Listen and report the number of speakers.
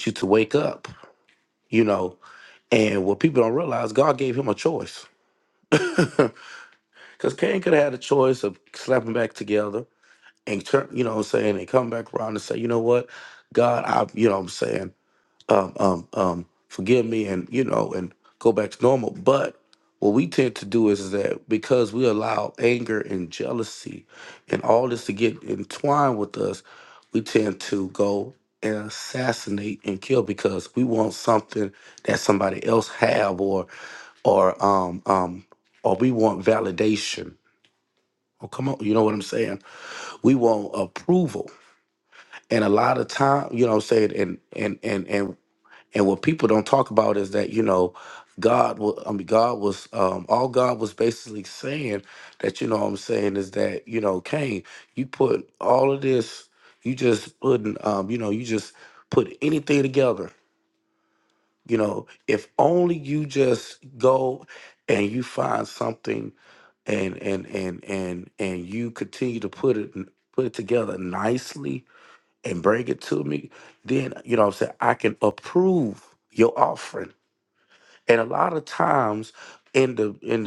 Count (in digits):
1